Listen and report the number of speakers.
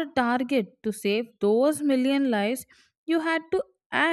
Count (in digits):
1